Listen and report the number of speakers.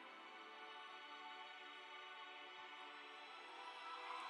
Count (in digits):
0